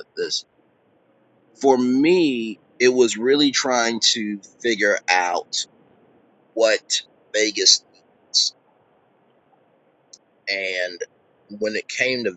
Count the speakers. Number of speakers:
1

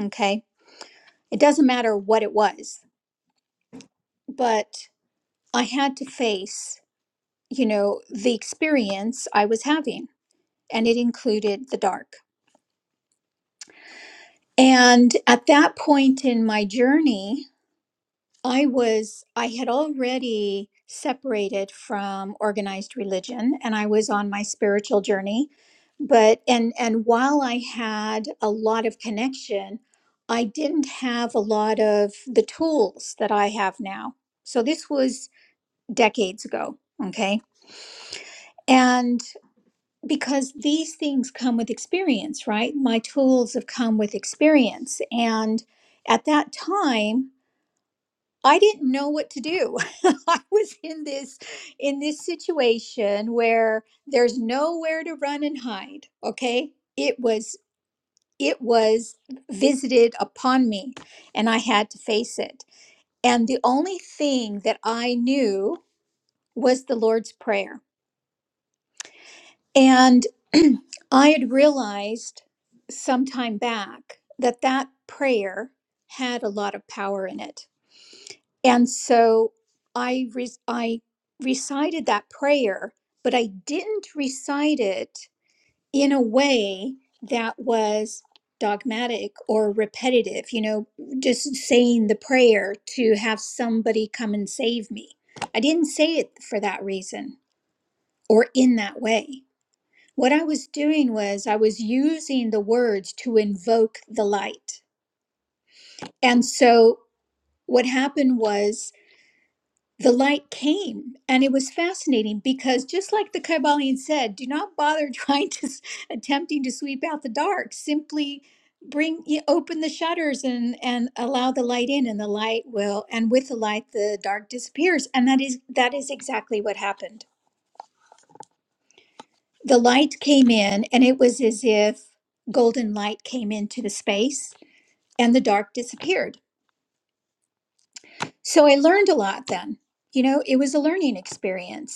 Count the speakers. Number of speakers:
1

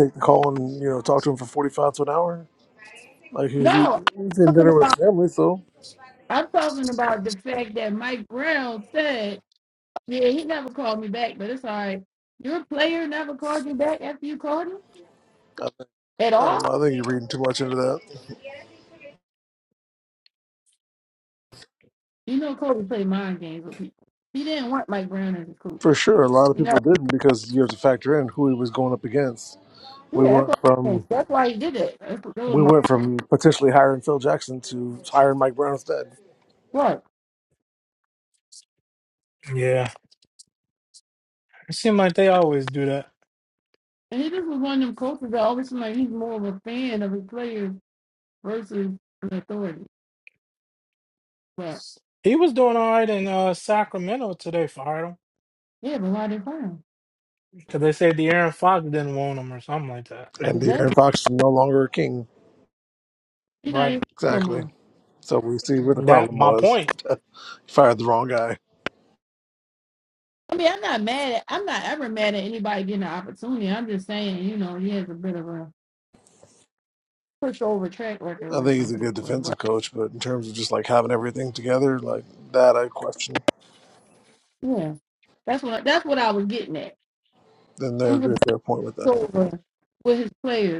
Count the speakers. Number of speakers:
3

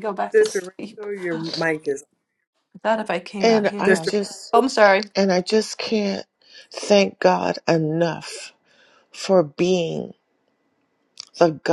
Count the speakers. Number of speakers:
3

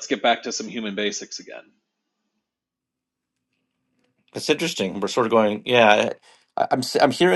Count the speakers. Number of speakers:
2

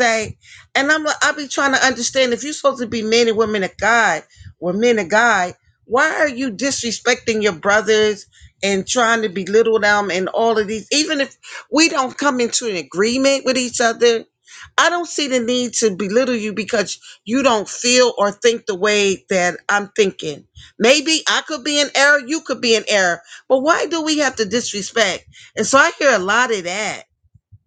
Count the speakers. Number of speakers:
1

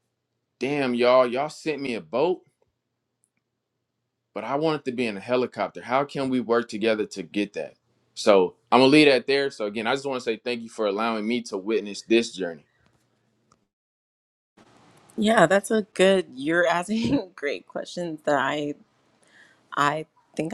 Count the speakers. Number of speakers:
2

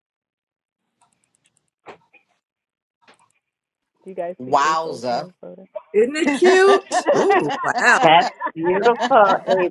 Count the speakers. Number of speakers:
3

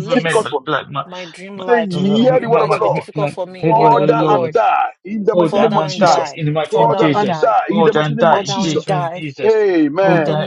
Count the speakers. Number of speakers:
3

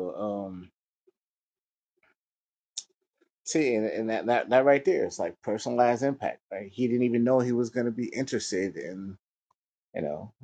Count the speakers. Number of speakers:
1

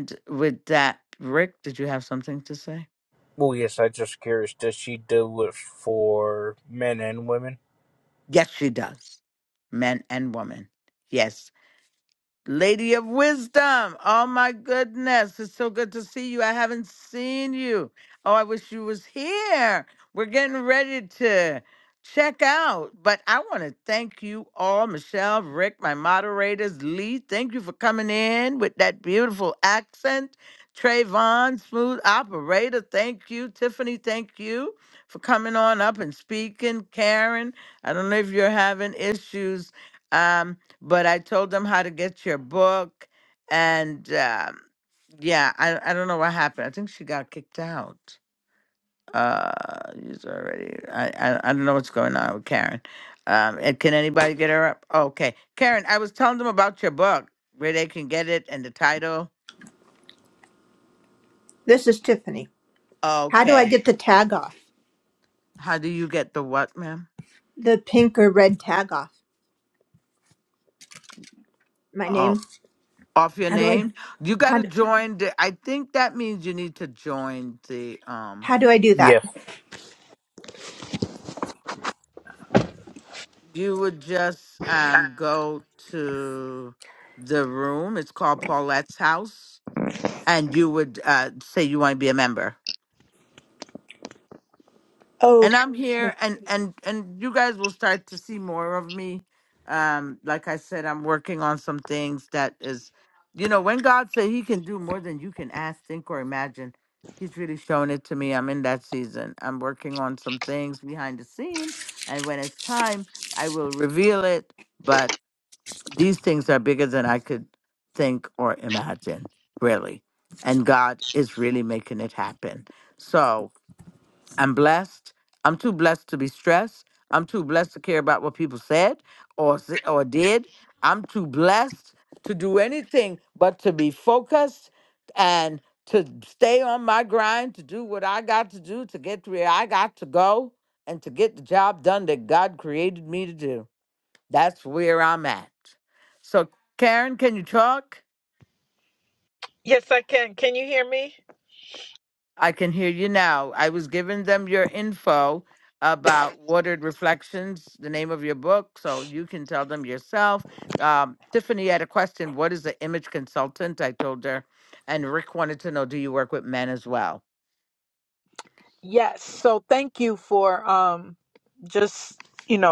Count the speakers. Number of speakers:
4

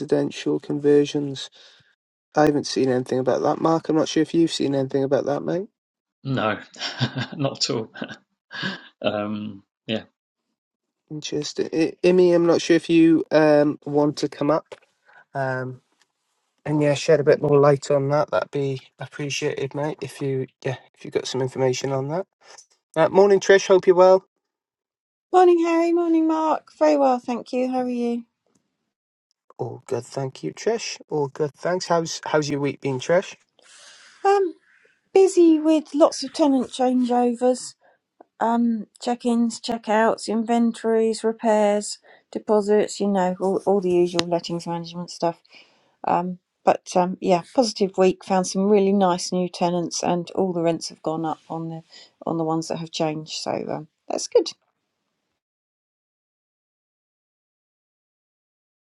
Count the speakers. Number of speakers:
3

